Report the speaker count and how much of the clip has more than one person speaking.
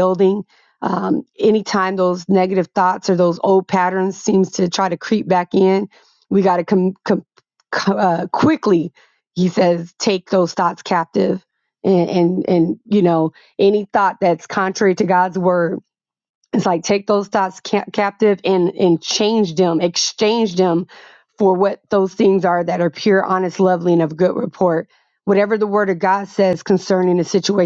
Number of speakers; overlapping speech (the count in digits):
1, no overlap